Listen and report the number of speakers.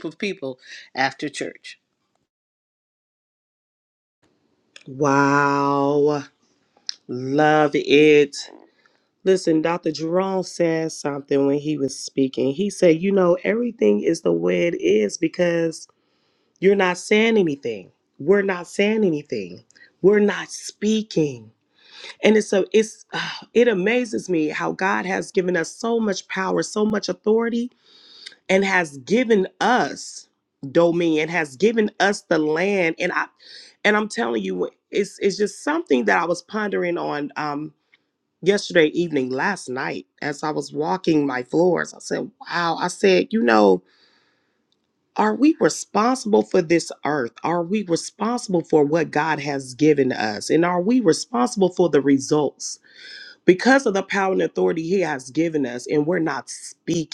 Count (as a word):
two